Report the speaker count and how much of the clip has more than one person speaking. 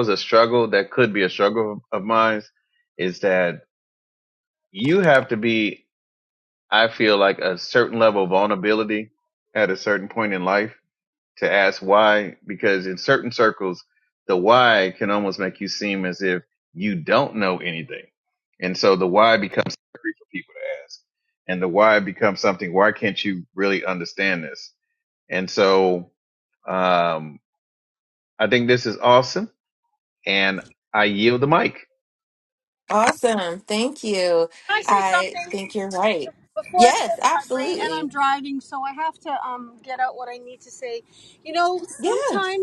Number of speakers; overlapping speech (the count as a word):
three, about 6%